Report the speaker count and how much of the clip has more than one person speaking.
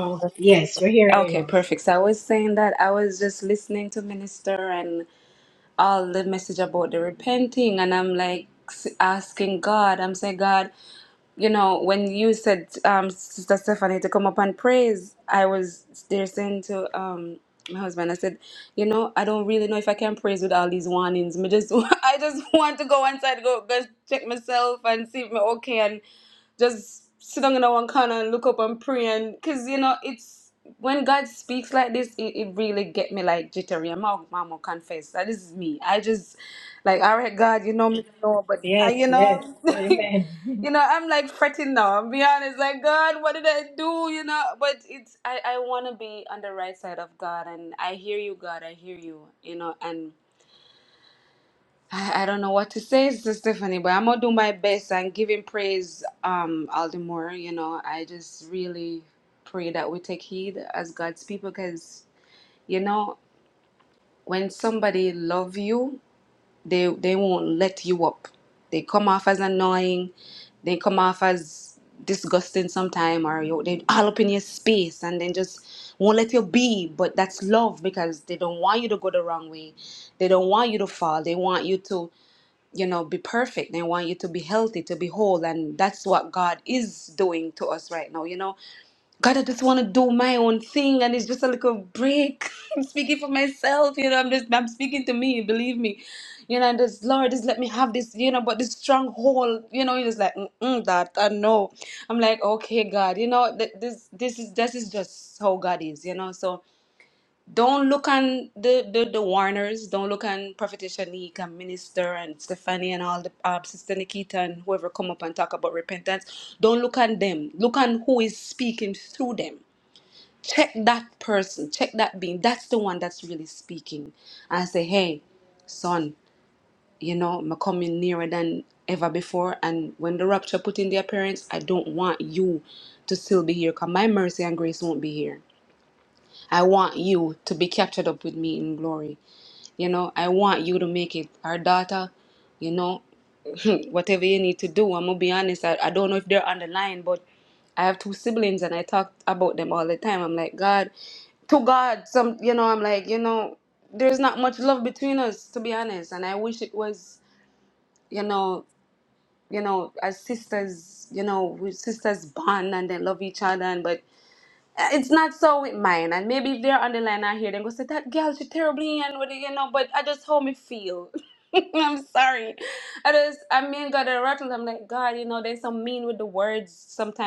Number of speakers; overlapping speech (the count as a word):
two, about 1%